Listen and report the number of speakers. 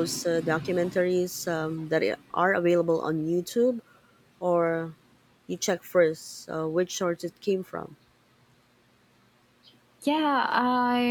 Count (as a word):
two